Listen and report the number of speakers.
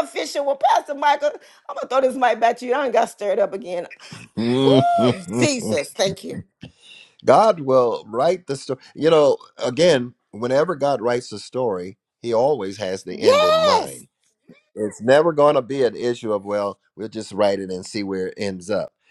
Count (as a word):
two